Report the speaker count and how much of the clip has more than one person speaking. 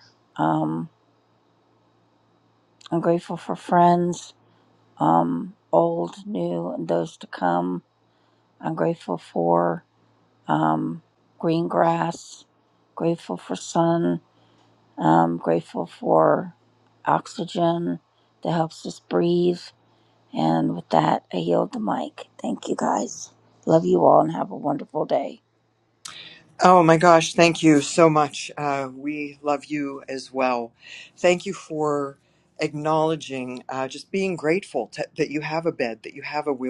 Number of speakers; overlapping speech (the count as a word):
two, no overlap